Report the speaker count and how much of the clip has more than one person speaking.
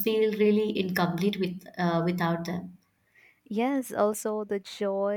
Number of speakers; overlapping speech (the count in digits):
2, no overlap